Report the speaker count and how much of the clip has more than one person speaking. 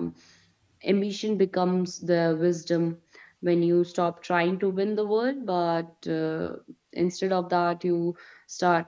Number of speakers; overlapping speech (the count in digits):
1, no overlap